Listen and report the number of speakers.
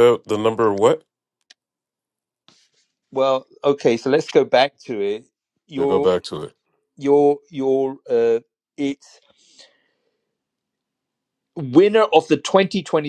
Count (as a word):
two